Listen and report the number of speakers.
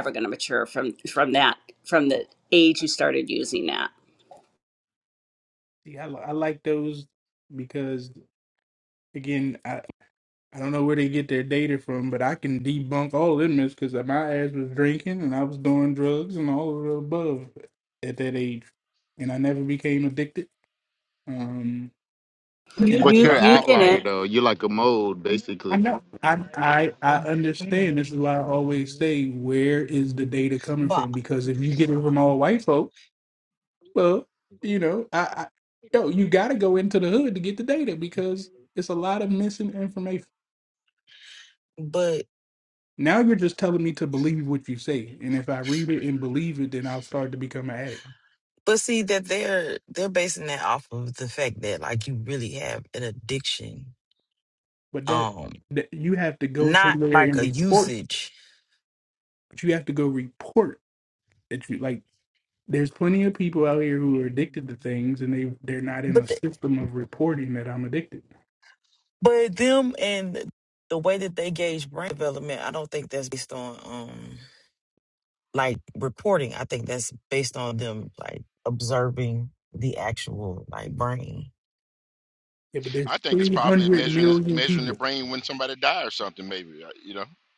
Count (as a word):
five